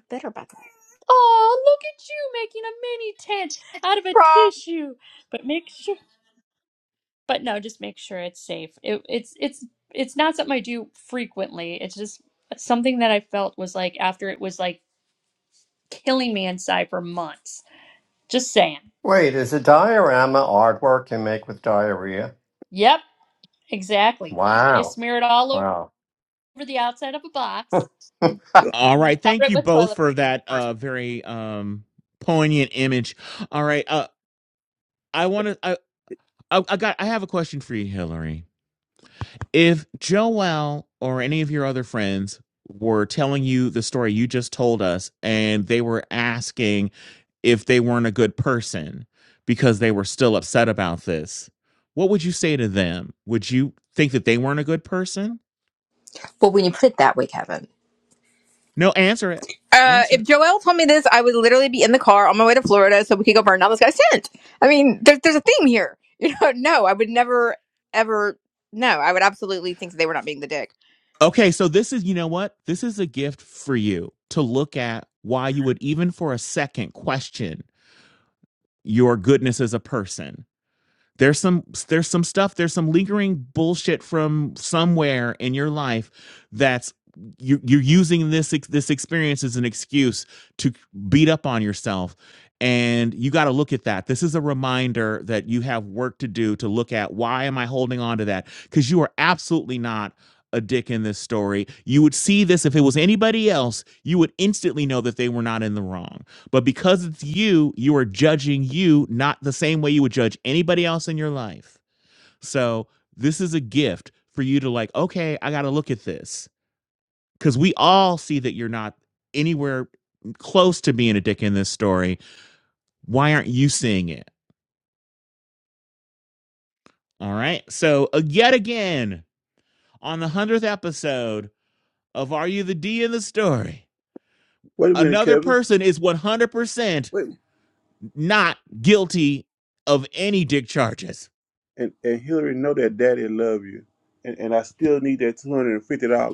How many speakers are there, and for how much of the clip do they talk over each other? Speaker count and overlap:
5, about 2%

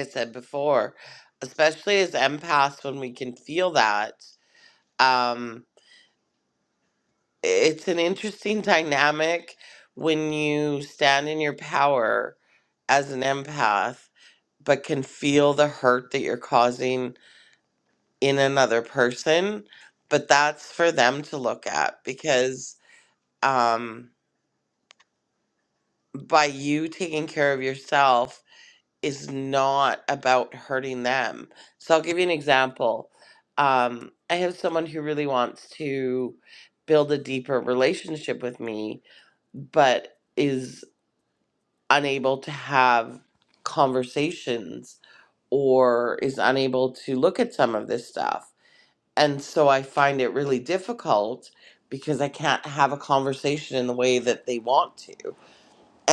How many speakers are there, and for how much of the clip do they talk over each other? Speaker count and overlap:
1, no overlap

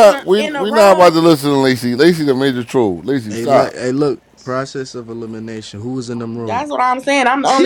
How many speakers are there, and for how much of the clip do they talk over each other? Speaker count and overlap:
3, about 23%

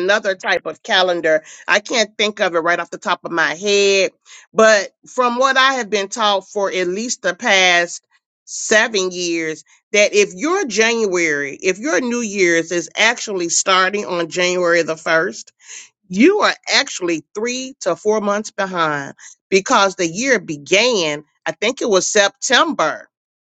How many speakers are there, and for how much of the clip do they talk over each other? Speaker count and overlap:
1, no overlap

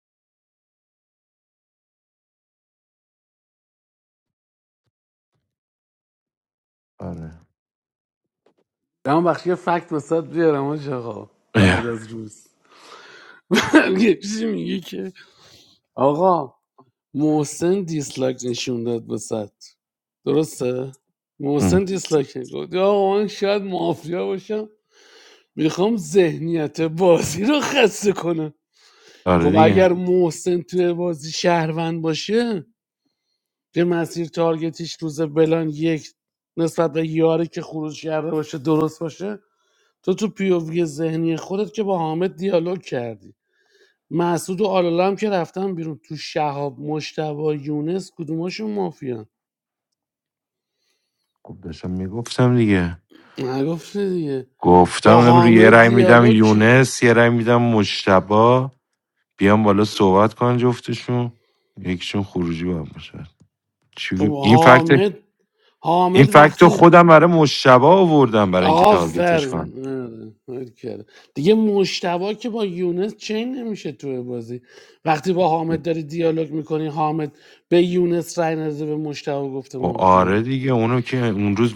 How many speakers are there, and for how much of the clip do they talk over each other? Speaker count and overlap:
2, about 7%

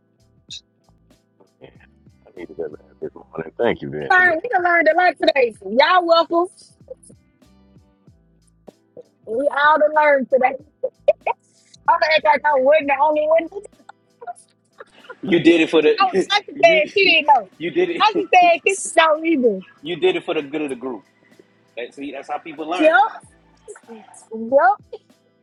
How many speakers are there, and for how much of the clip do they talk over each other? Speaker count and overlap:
3, about 3%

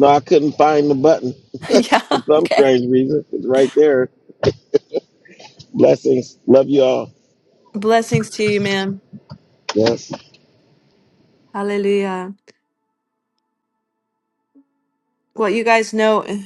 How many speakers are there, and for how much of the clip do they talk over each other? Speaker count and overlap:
2, about 3%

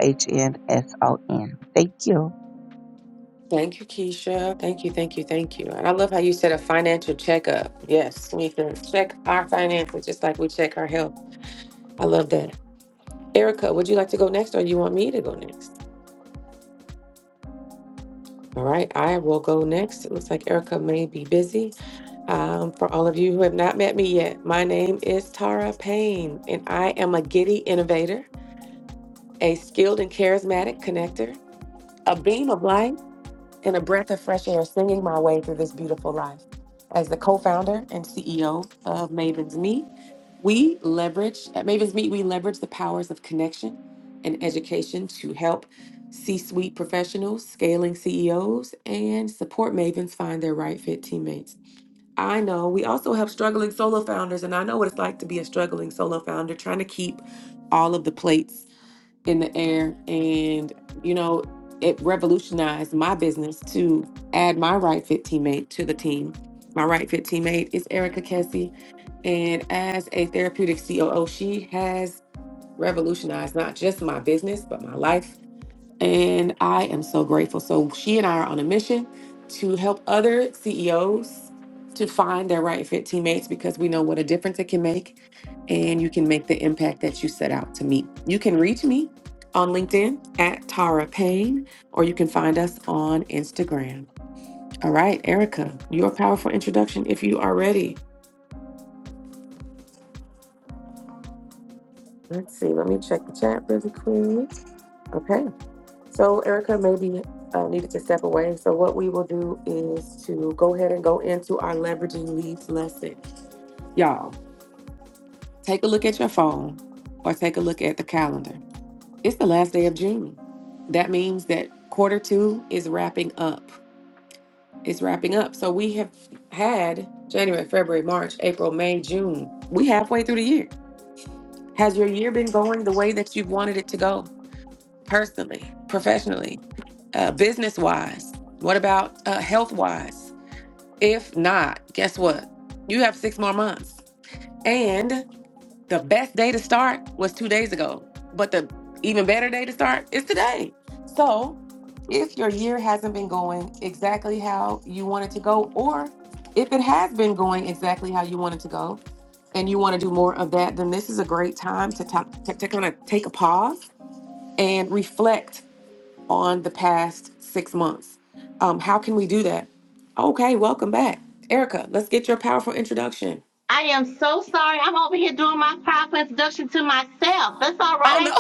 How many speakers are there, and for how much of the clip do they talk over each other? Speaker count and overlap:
3, under 1%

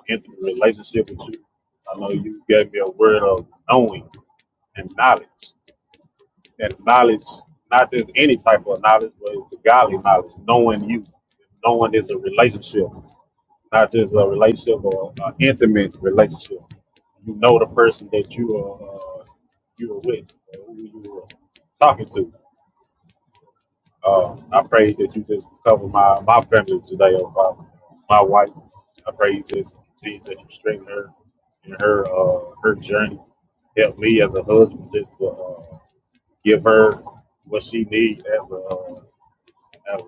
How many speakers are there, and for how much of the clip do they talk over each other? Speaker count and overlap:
1, no overlap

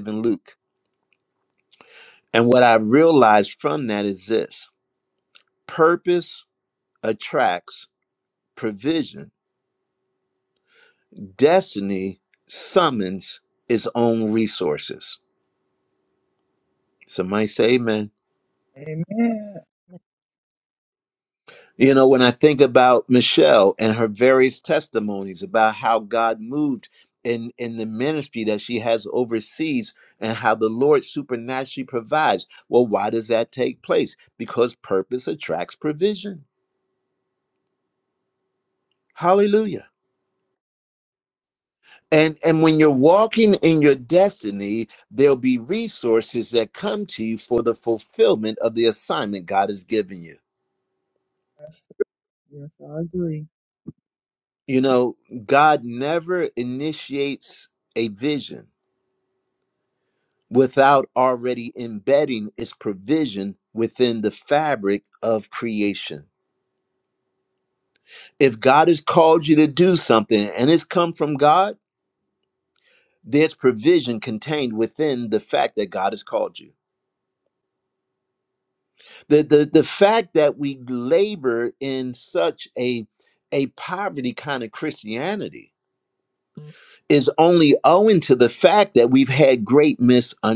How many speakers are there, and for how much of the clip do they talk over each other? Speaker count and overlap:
2, no overlap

